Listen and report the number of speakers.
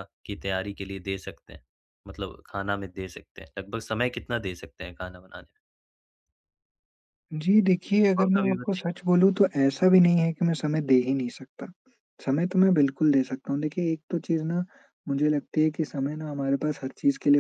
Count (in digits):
2